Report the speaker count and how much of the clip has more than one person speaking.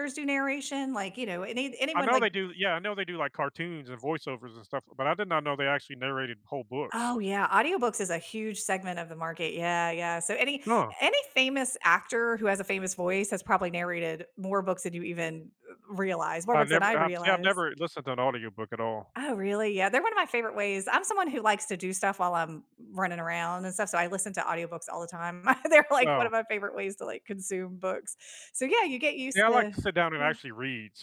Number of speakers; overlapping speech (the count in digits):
2, about 8%